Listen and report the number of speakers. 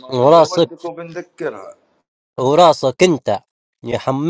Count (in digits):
2